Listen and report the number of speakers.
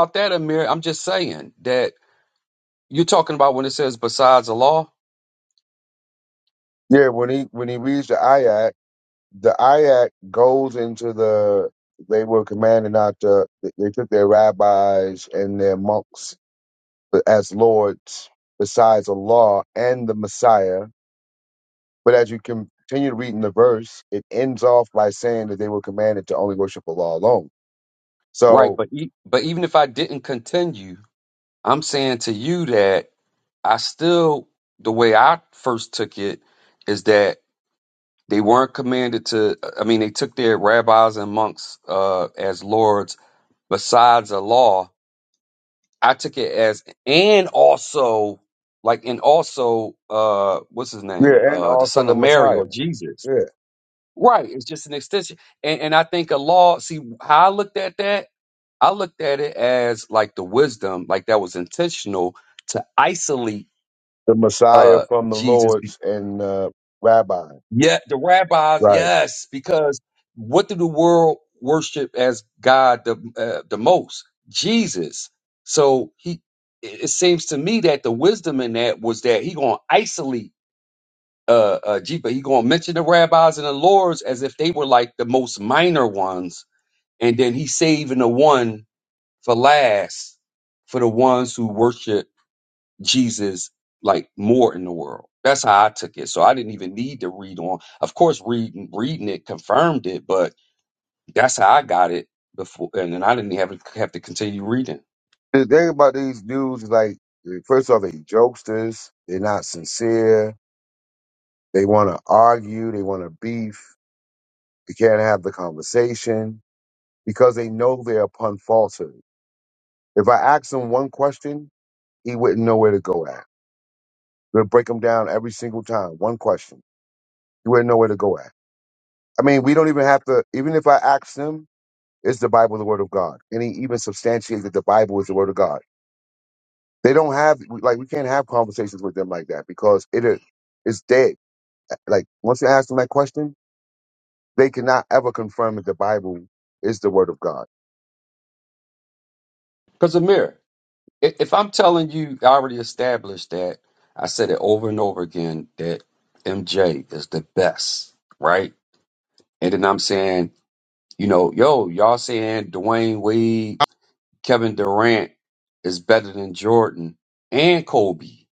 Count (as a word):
two